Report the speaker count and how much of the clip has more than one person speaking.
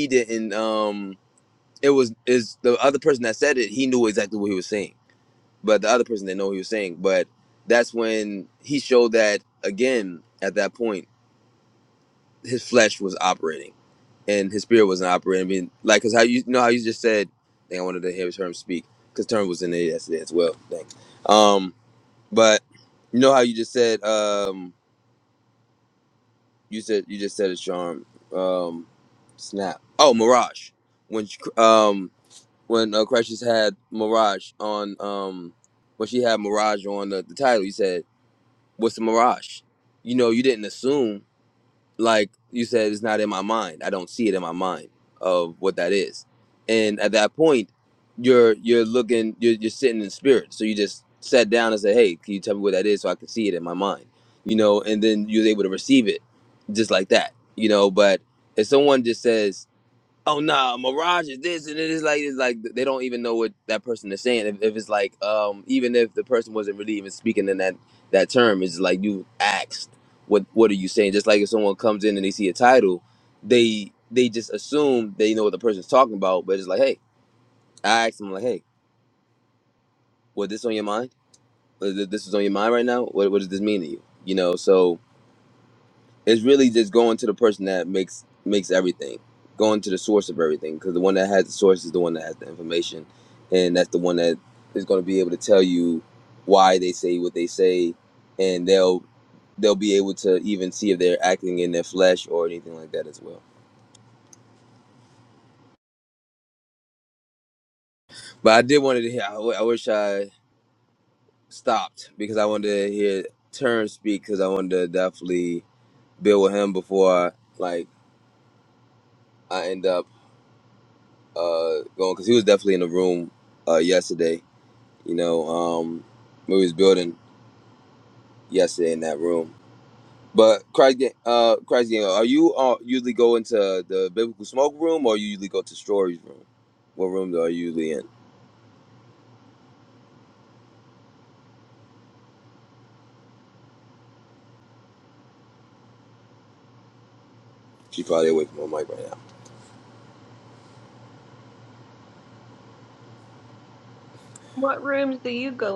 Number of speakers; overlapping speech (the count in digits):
2, no overlap